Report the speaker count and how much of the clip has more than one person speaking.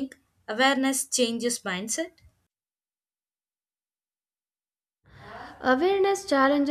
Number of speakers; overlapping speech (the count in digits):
2, no overlap